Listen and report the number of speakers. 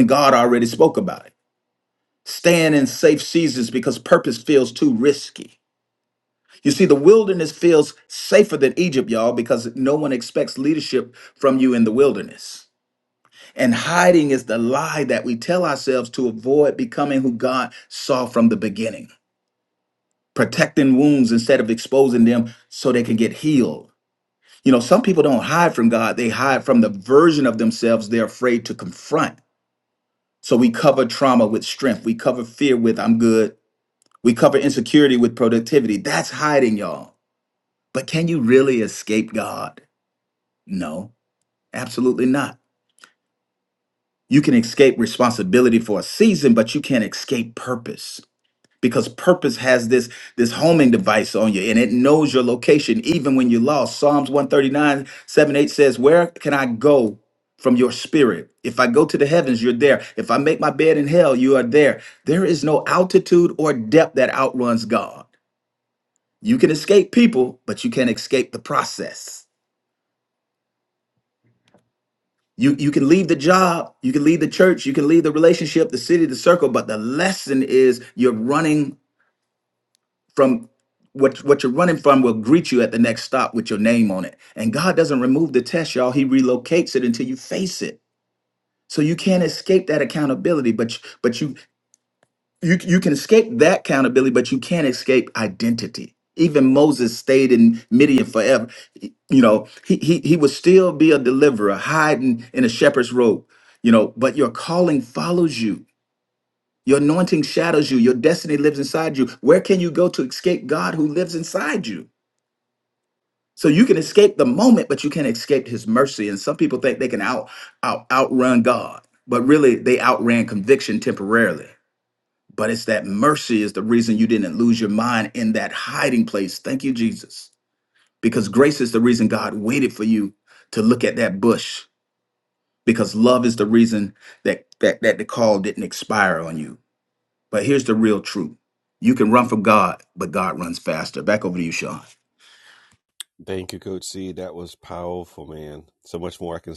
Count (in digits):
2